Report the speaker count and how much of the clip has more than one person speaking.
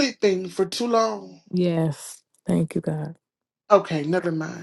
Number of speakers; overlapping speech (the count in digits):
2, no overlap